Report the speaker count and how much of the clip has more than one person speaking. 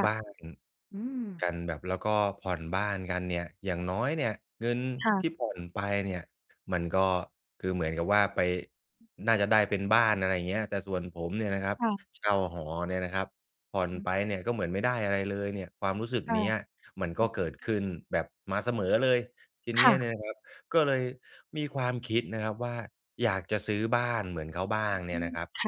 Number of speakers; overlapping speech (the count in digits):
2, about 3%